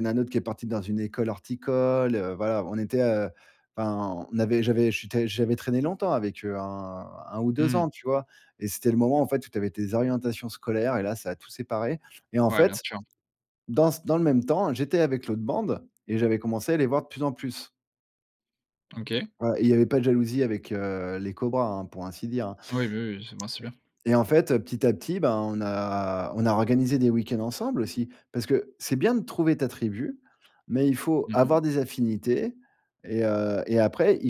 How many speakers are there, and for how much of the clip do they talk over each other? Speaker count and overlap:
two, about 3%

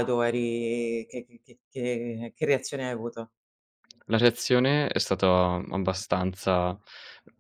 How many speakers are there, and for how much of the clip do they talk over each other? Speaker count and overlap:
two, no overlap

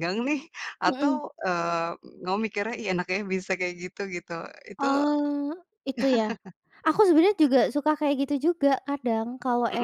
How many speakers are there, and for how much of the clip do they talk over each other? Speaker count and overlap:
two, about 6%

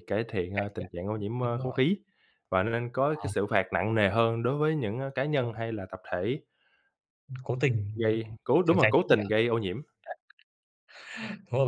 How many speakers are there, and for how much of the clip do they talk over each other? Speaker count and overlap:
two, about 15%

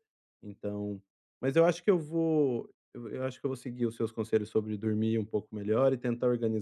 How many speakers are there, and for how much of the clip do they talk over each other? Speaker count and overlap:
one, no overlap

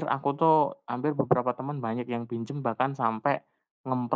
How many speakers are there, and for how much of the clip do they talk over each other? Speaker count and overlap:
one, no overlap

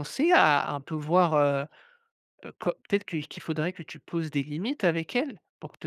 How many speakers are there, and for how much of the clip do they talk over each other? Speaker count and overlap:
one, no overlap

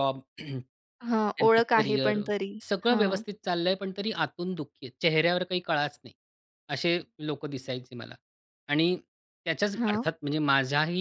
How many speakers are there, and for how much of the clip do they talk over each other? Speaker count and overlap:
two, about 16%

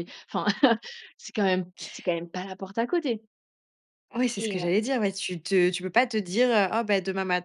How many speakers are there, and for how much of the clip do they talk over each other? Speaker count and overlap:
two, about 5%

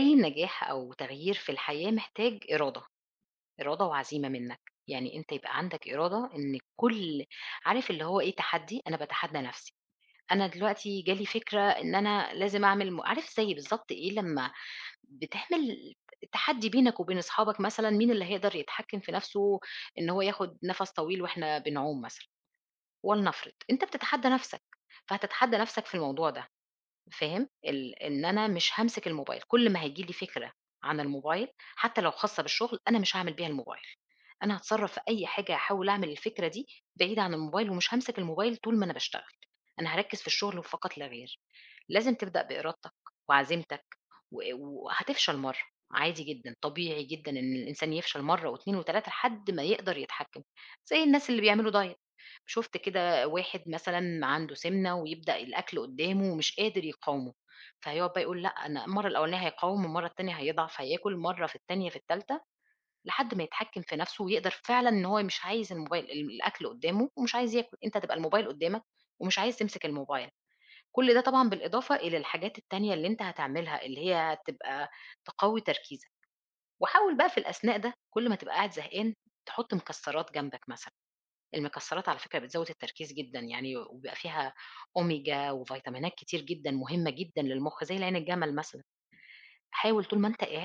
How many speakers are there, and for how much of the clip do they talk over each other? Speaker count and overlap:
one, no overlap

